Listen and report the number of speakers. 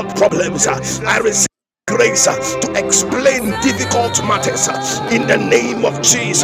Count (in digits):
1